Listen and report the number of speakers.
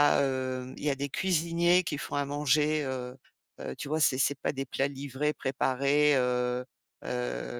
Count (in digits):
1